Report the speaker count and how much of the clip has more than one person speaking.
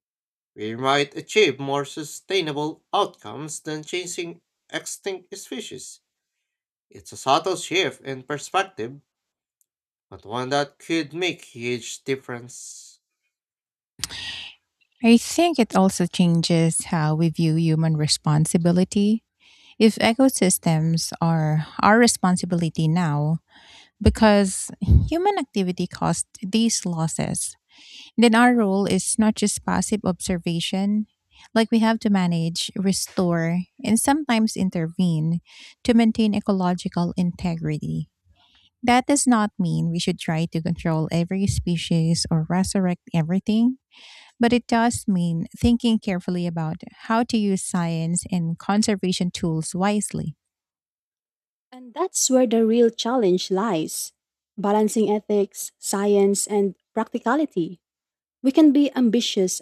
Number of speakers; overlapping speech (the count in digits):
3, no overlap